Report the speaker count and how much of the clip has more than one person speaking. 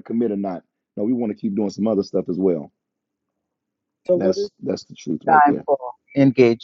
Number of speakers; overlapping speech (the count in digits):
2, about 10%